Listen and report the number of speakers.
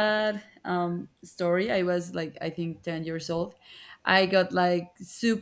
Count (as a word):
one